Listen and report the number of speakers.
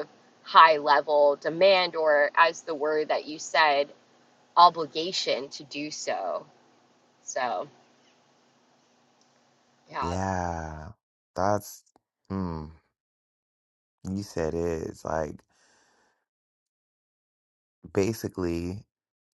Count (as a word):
two